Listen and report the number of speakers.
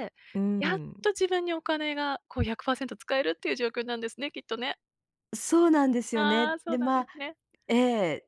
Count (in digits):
2